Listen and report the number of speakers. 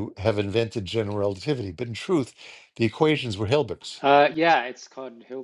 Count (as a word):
two